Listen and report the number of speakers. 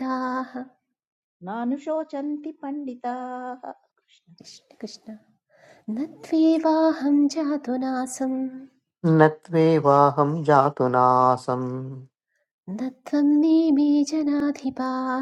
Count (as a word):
three